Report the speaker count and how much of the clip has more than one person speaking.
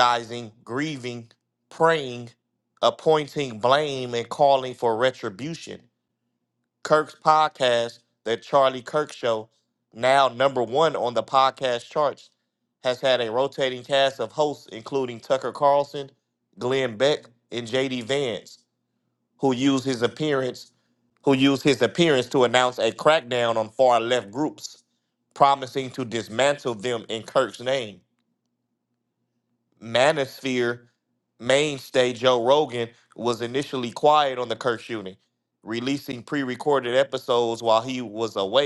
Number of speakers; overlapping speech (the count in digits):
1, no overlap